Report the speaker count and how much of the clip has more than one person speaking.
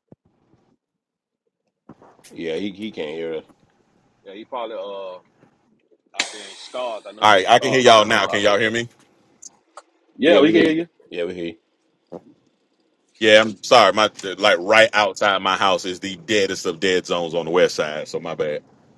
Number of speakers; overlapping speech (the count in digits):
3, about 11%